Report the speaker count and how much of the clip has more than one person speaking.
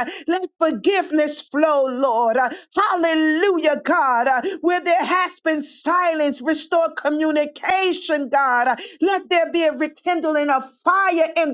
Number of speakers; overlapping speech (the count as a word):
one, no overlap